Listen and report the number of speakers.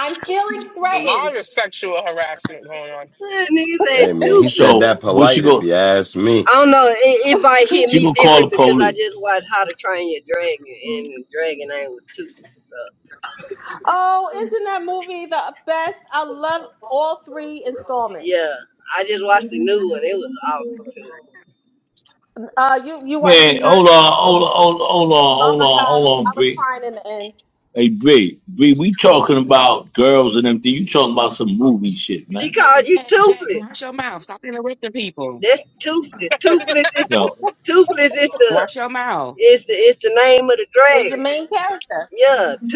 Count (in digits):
6